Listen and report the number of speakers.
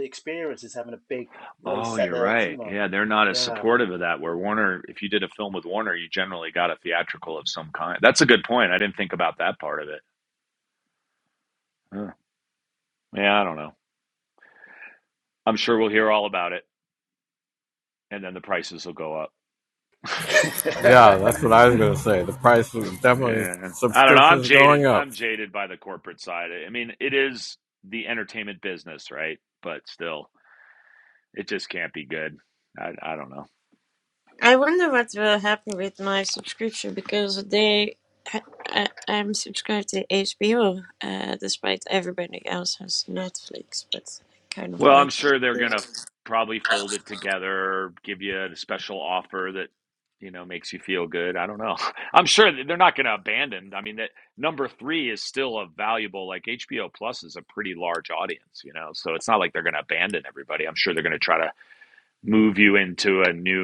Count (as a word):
four